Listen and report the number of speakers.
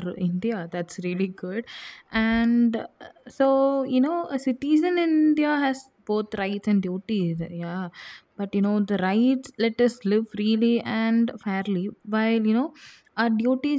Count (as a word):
one